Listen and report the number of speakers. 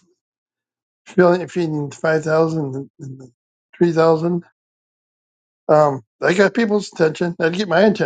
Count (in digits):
1